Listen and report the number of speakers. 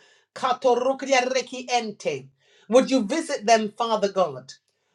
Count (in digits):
1